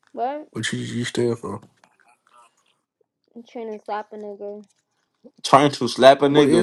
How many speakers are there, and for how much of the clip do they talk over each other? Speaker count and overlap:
3, about 5%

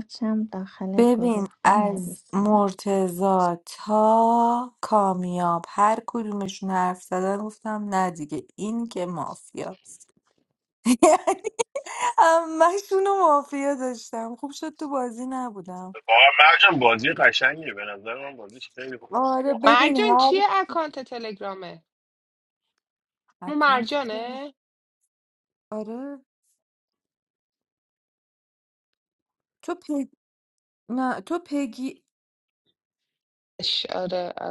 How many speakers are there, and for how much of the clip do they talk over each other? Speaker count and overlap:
4, about 11%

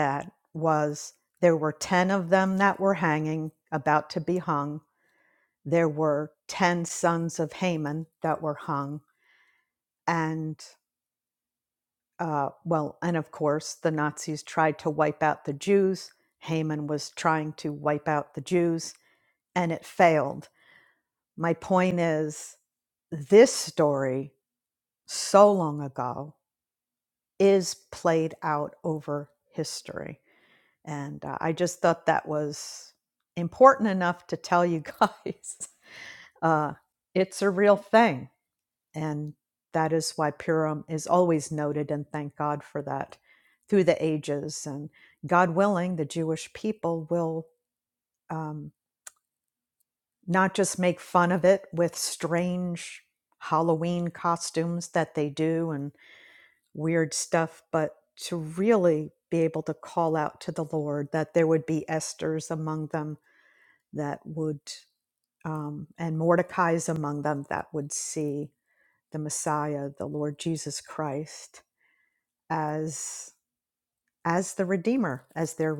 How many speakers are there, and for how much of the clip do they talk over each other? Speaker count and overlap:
1, no overlap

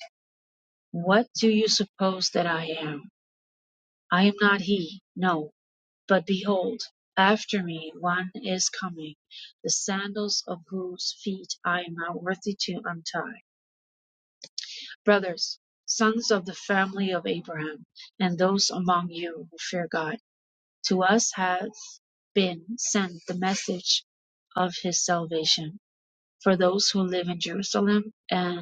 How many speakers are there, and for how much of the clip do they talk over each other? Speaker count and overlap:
1, no overlap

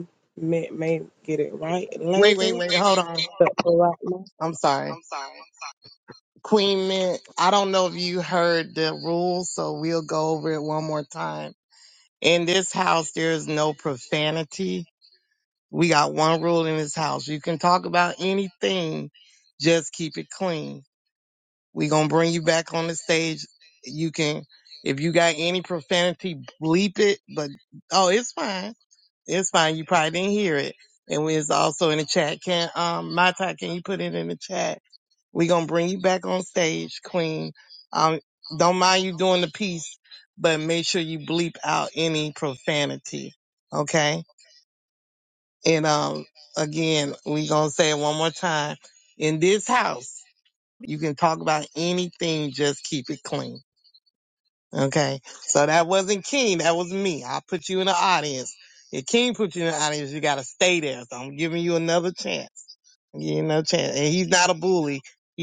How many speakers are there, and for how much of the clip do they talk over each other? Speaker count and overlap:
2, about 1%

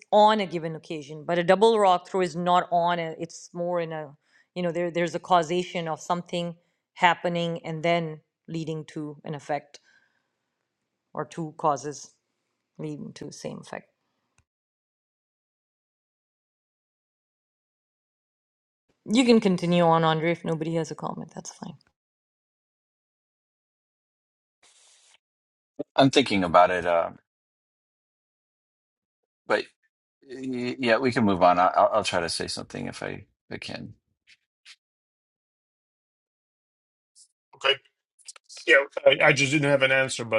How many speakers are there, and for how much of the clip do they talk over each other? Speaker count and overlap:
3, no overlap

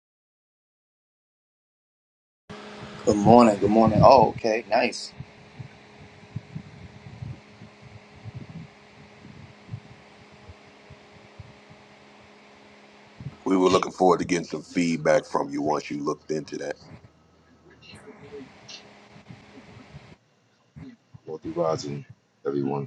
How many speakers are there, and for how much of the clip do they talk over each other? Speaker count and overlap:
3, no overlap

